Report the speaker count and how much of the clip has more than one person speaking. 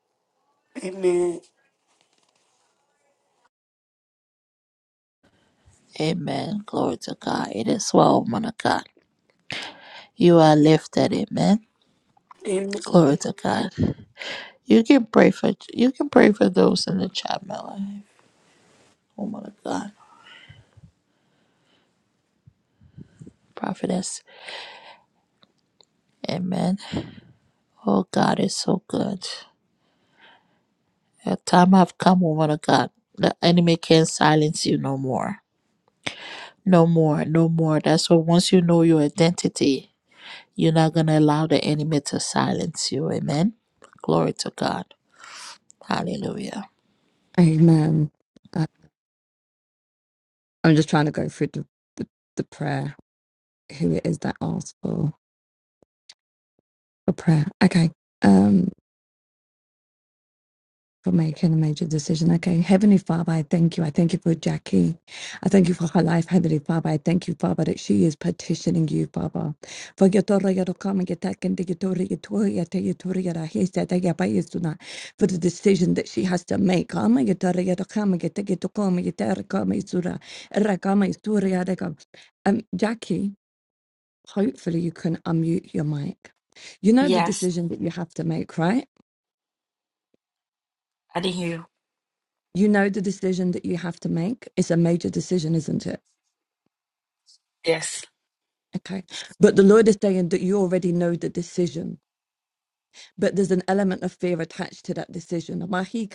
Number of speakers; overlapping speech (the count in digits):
4, under 1%